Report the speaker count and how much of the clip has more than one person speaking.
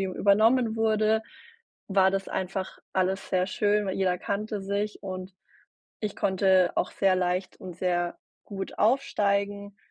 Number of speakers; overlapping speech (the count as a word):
one, no overlap